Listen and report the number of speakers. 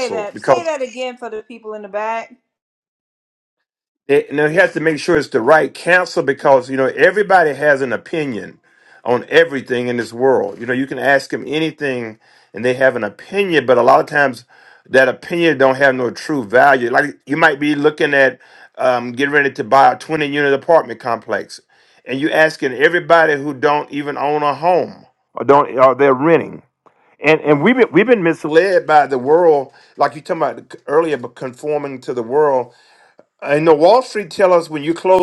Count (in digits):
2